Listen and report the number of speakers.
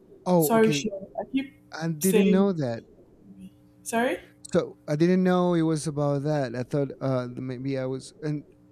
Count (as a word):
two